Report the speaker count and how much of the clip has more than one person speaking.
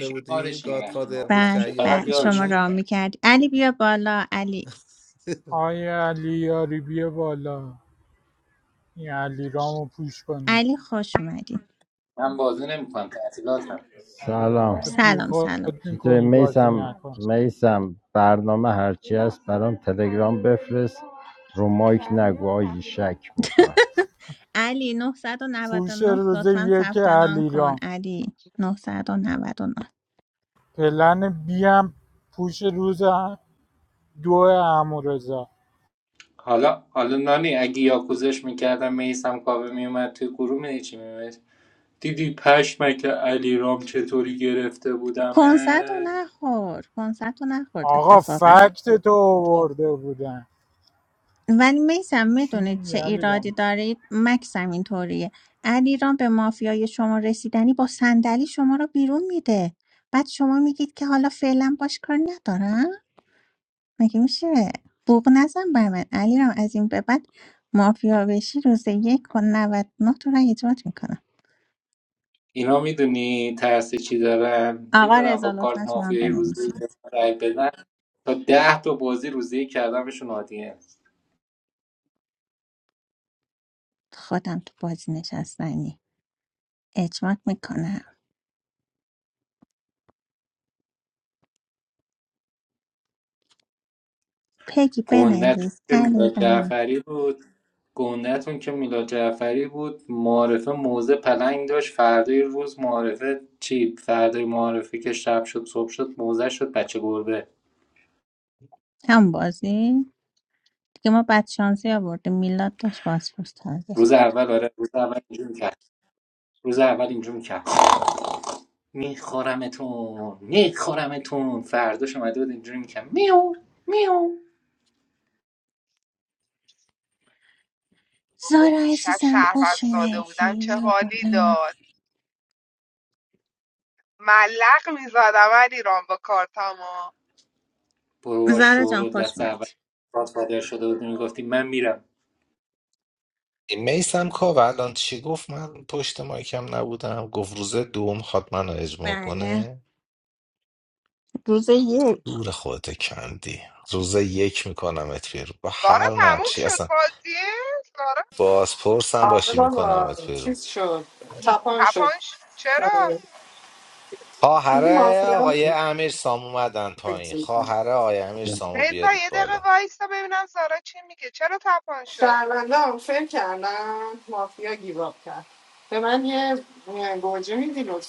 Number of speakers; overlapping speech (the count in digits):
7, about 12%